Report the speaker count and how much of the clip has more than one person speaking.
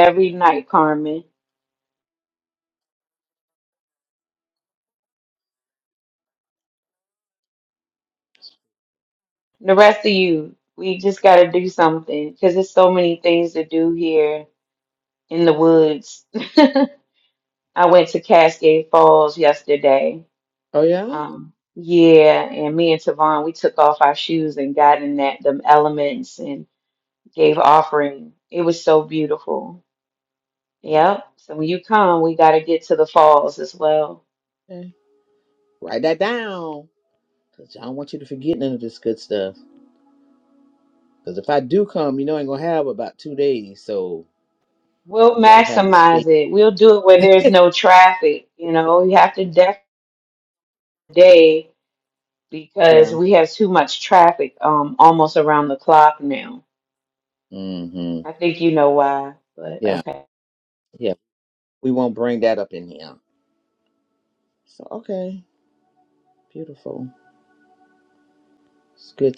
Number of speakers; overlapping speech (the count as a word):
two, about 2%